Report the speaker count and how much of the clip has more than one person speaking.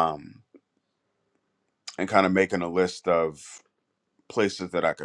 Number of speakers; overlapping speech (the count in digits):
1, no overlap